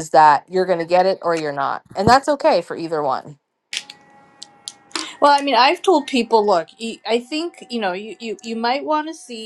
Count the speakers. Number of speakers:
two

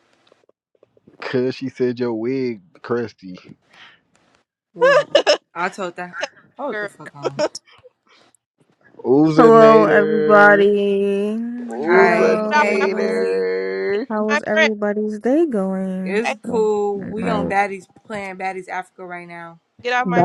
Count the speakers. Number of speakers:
four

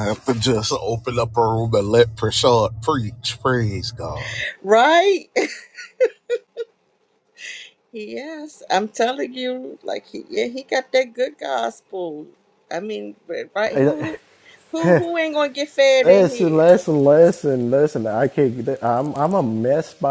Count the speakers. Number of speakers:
three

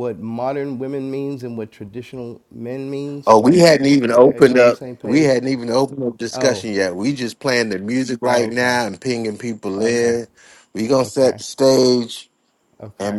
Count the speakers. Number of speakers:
two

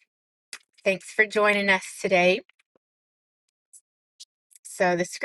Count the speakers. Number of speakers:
one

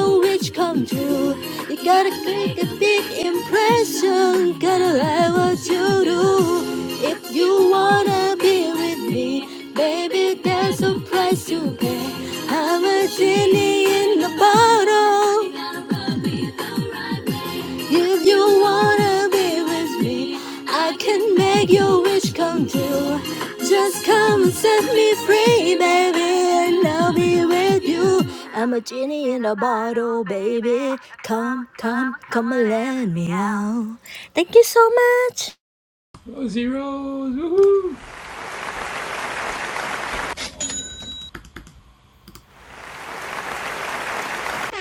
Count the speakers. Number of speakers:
two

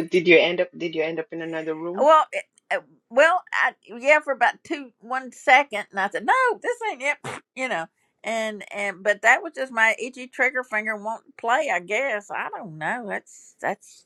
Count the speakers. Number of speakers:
two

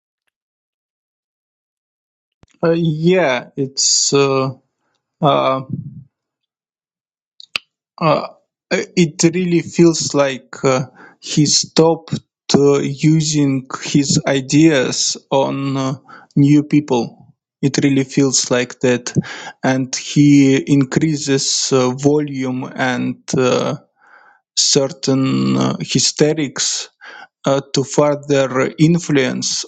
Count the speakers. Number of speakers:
one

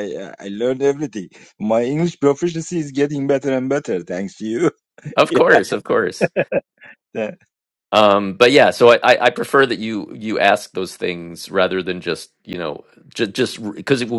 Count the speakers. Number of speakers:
two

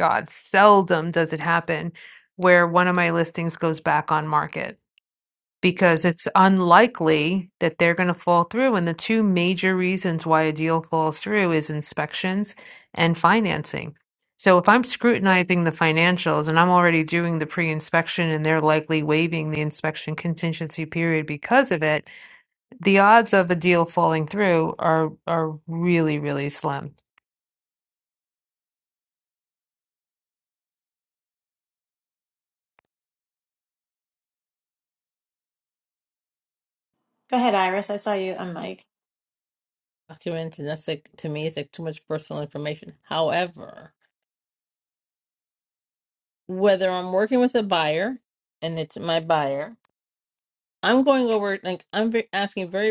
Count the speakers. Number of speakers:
three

